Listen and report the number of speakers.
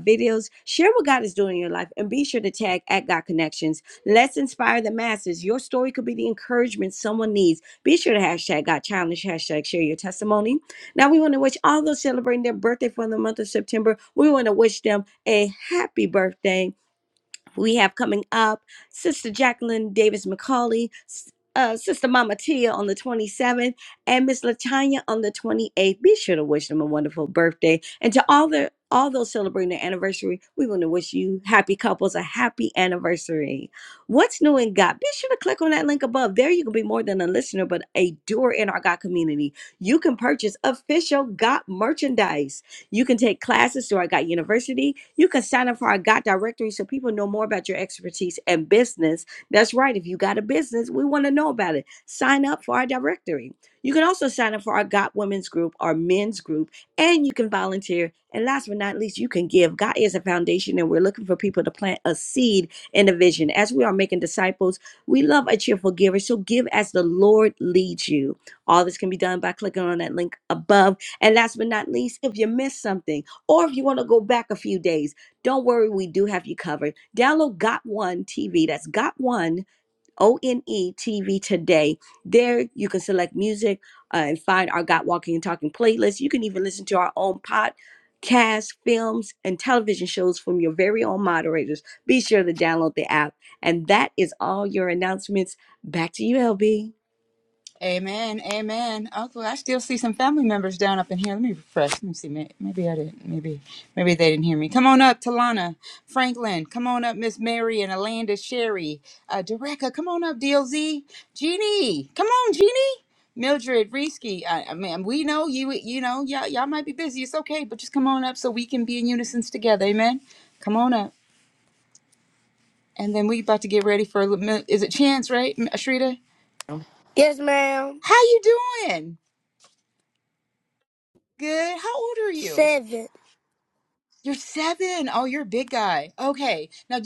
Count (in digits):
3